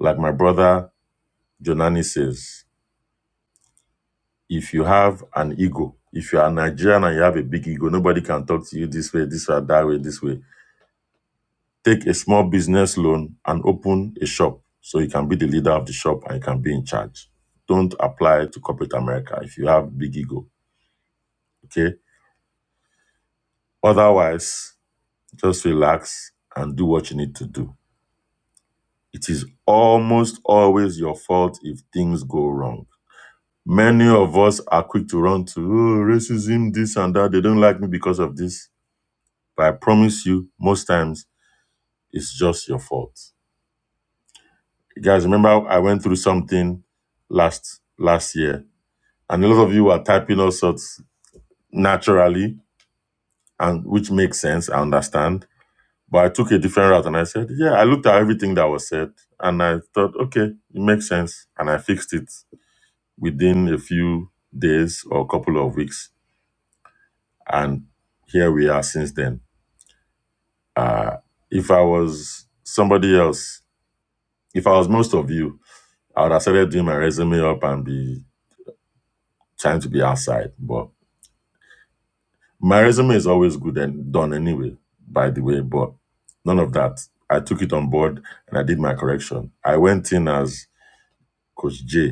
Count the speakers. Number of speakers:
one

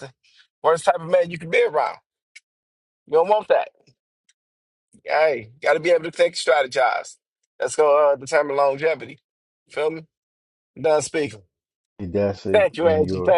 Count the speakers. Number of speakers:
two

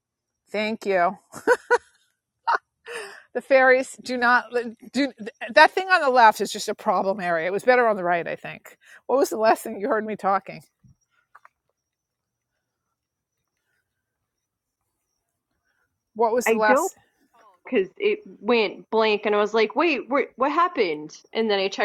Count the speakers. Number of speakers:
two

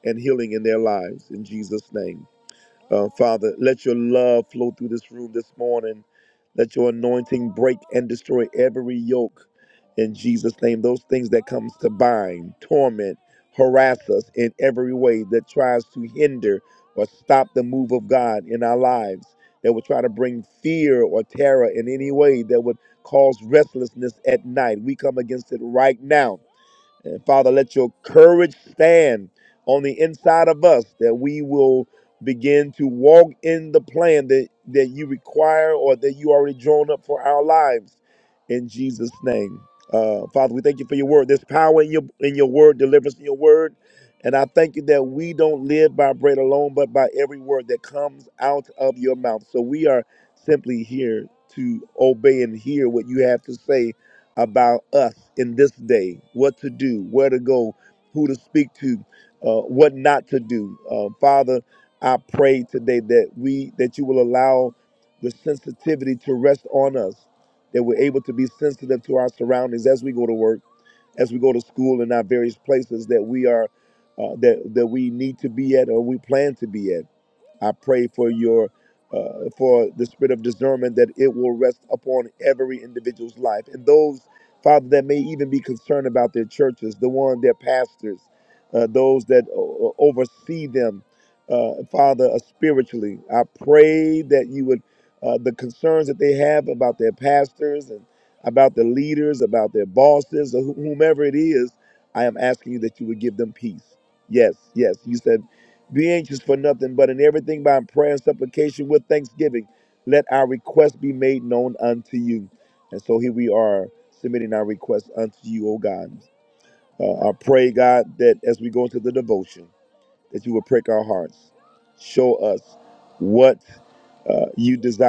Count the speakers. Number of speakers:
one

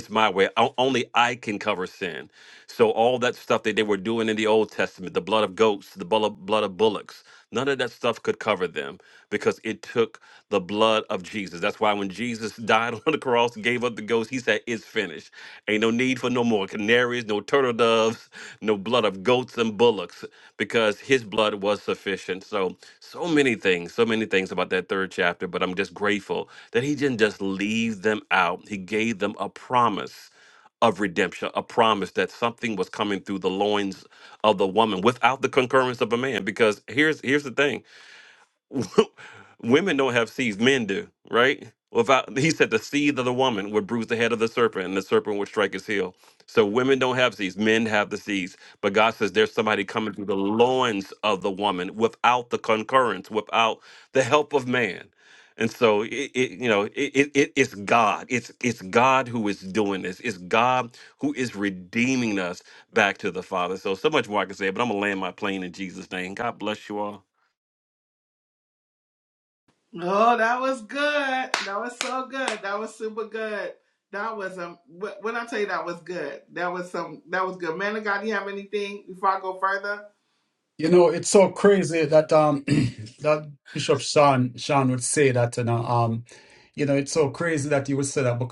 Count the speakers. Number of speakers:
three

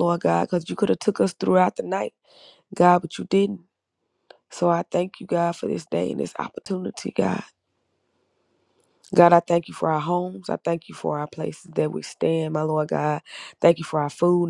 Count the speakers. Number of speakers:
one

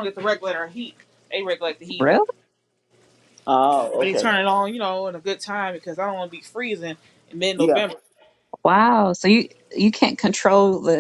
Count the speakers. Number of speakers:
three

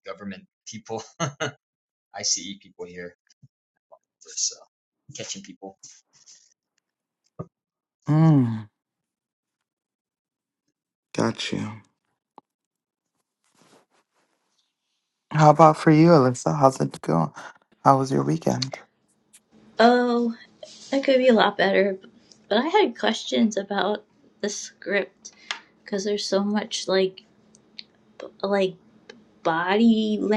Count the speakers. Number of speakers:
three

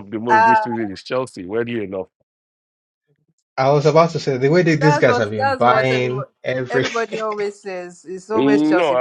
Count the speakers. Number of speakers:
three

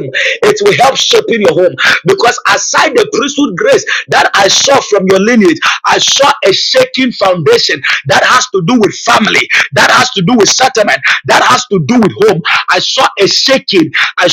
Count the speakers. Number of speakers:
one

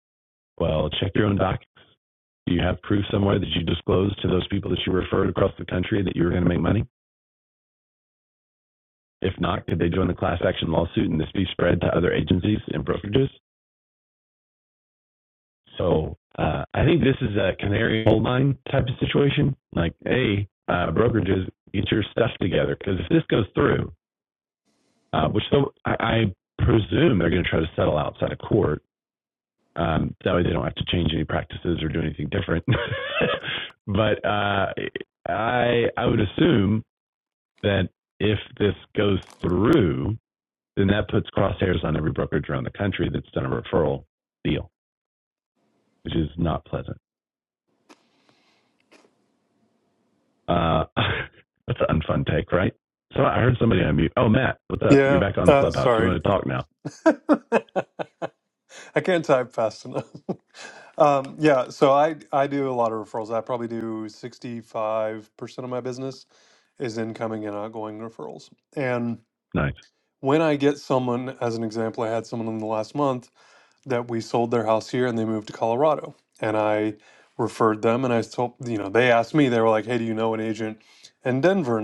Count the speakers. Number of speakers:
two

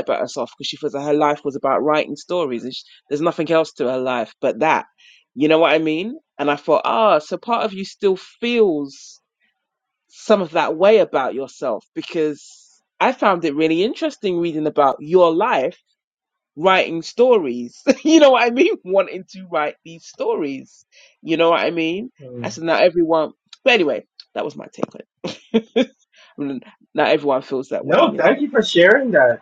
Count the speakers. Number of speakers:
two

